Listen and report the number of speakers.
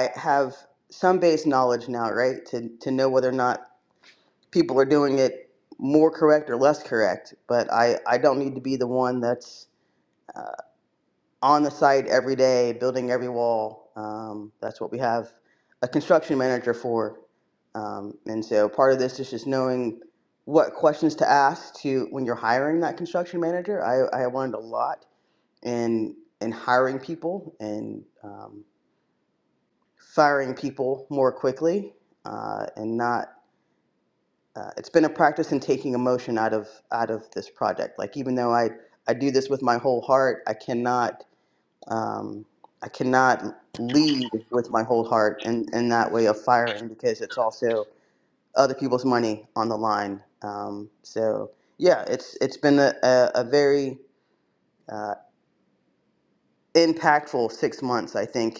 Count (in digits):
1